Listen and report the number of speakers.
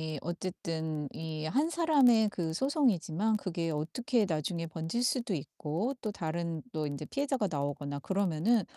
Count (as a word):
one